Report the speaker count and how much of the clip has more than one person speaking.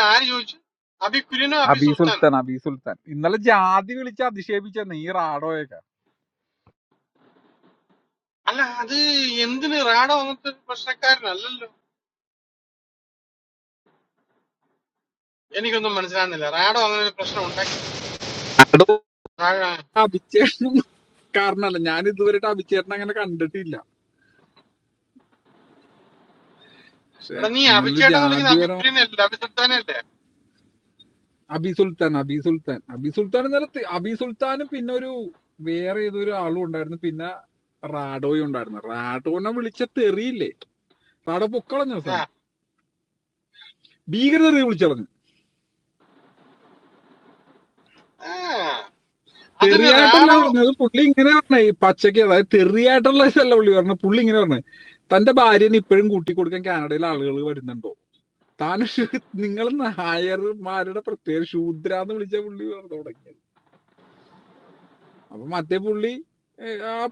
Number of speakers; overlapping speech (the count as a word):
two, about 4%